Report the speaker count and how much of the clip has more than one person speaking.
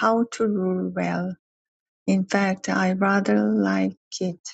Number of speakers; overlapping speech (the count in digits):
1, no overlap